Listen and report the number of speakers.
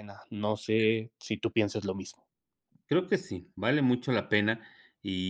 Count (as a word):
two